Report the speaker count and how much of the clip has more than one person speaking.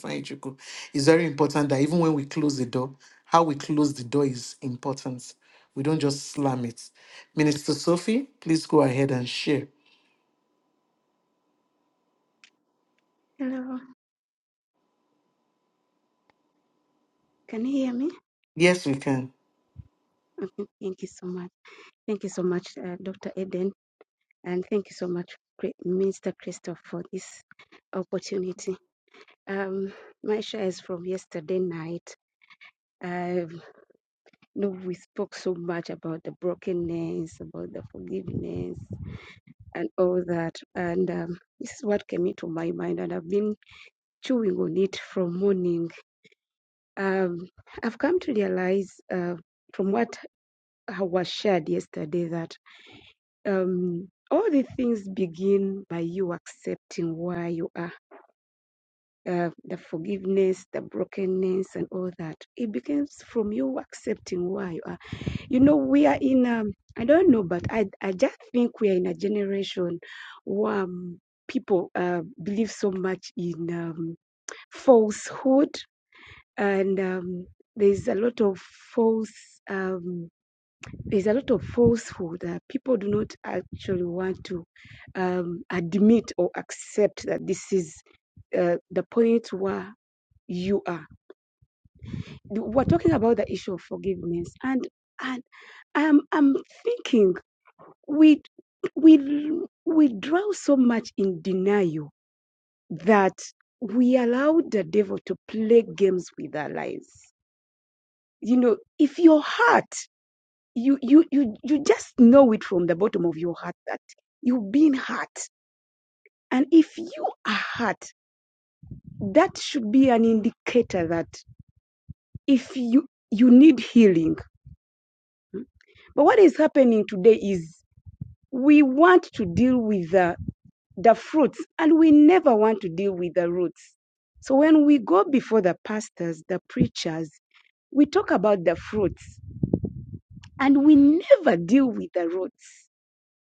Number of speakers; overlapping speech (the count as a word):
two, no overlap